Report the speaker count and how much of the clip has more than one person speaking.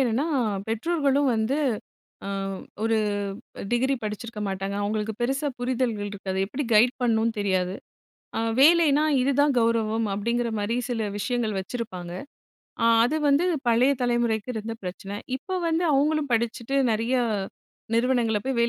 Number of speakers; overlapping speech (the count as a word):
one, no overlap